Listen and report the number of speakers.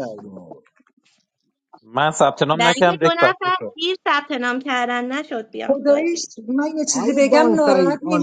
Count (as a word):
four